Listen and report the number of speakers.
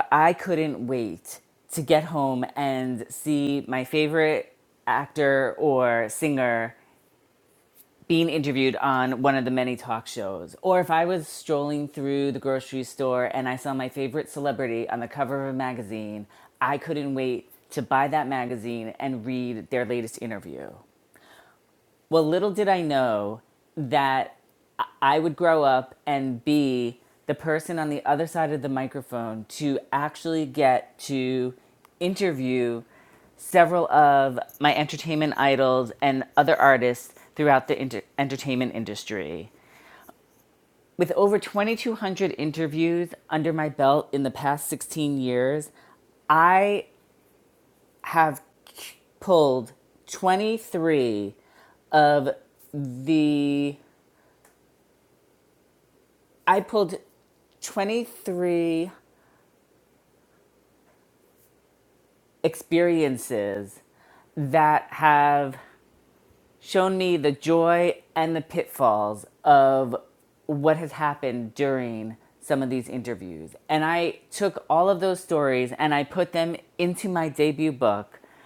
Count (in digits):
1